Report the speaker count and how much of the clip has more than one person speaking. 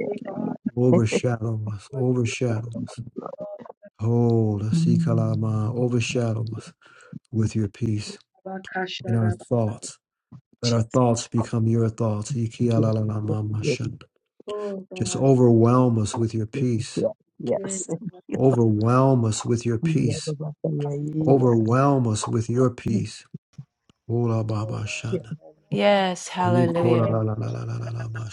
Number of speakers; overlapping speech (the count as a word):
four, about 9%